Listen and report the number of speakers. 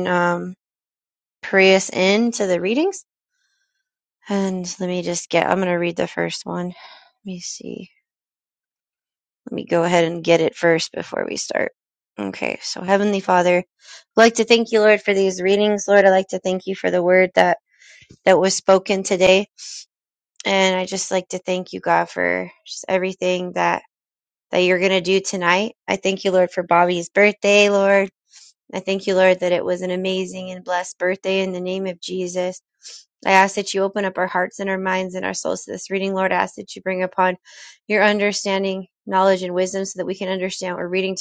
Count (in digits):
1